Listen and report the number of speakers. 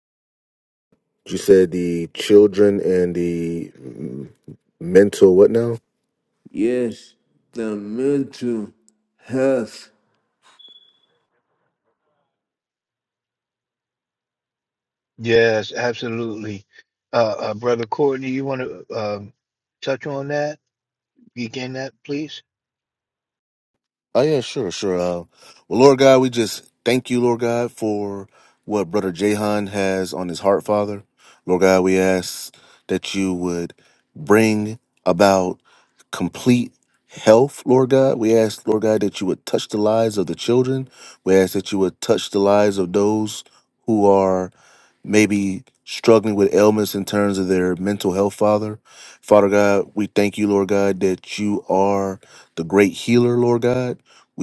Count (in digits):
3